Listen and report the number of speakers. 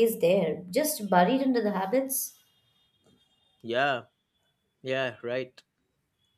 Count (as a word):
two